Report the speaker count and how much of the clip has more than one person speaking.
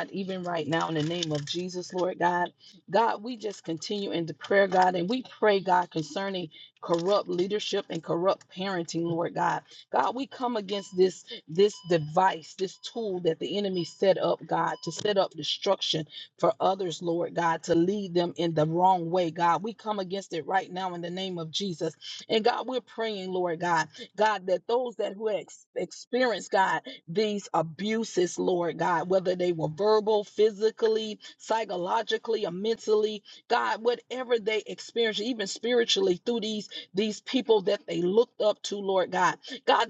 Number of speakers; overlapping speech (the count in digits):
1, no overlap